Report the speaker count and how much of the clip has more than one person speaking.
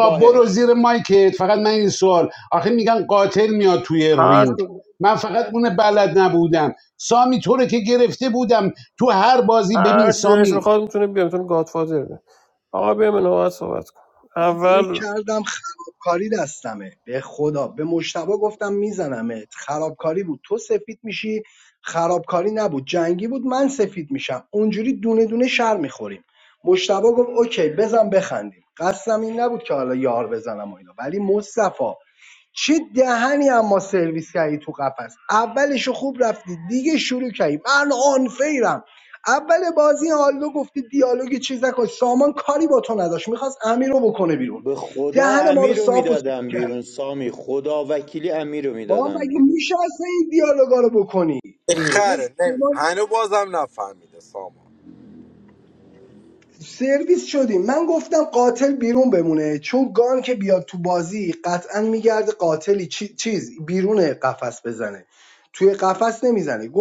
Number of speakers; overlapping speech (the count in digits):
5, about 9%